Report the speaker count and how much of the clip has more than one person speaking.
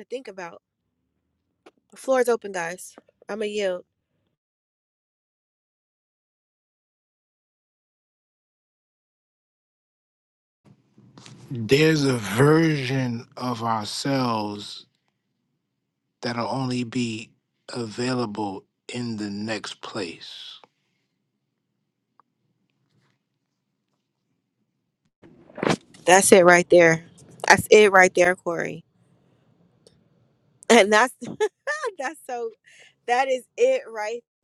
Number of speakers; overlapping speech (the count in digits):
2, no overlap